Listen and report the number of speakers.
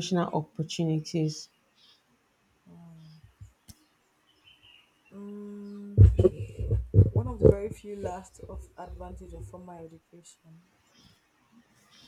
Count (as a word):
two